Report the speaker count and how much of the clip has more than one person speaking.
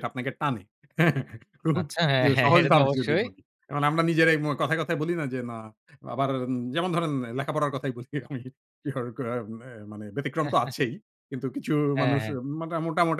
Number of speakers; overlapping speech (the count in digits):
2, about 12%